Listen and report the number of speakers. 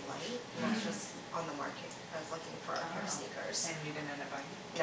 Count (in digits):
2